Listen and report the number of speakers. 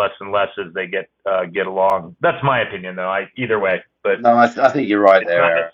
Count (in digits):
2